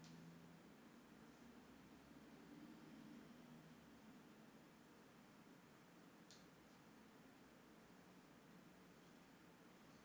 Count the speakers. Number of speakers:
0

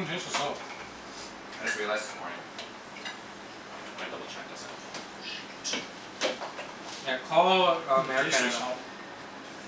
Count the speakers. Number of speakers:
3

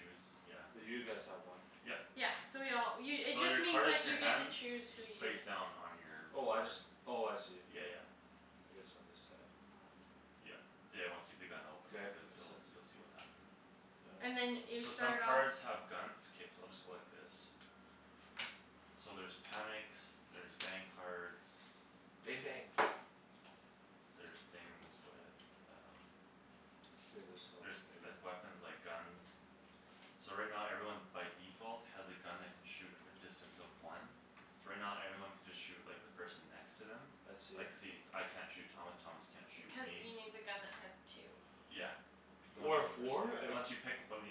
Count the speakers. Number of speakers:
3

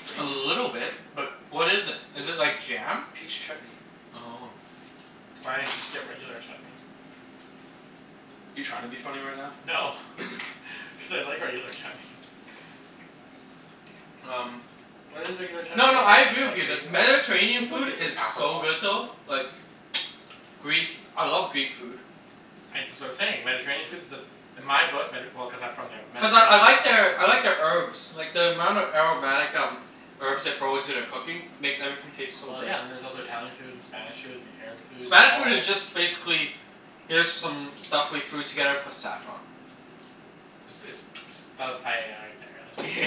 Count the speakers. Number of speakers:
3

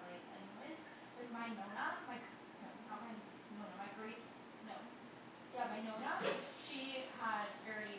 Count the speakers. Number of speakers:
1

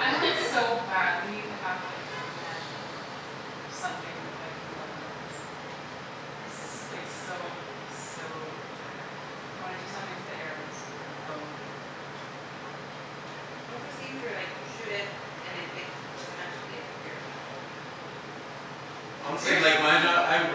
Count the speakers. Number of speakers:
3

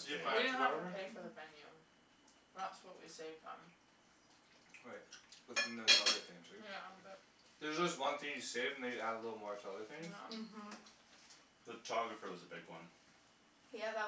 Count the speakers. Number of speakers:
4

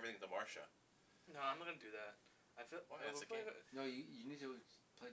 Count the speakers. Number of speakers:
3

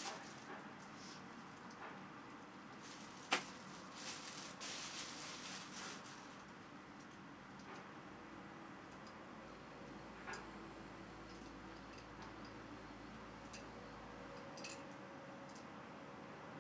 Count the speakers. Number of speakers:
0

